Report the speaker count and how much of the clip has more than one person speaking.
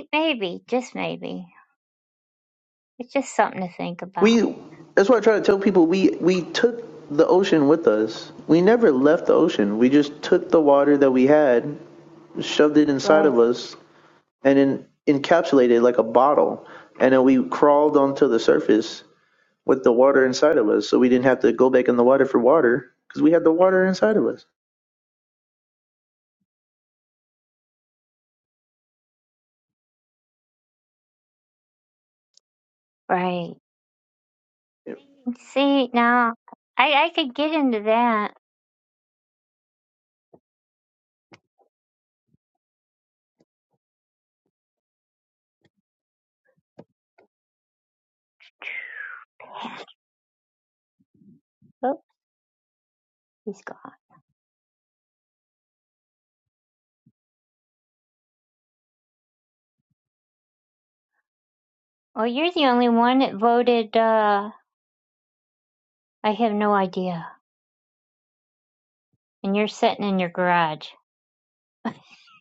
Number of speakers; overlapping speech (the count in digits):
2, about 1%